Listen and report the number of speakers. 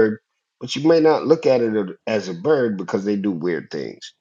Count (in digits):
1